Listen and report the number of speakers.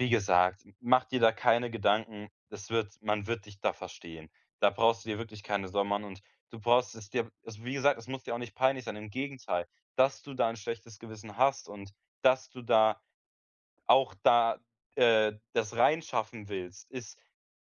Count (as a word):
one